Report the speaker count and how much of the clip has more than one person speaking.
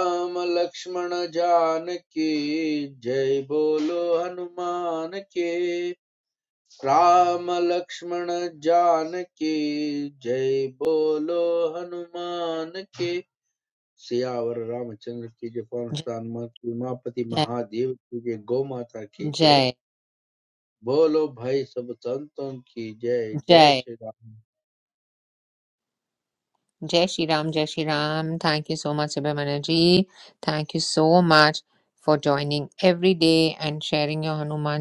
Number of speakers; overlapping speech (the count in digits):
2, about 2%